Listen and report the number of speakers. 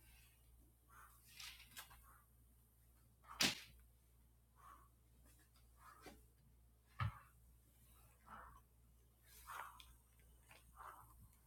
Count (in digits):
0